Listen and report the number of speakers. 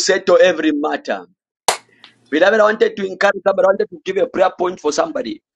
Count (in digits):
1